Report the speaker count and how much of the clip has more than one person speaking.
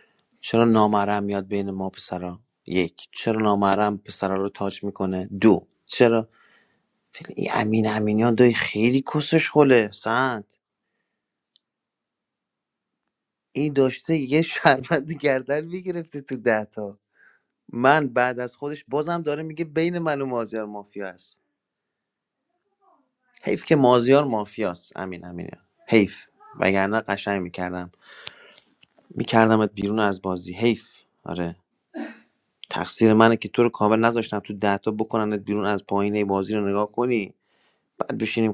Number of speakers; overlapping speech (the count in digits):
1, no overlap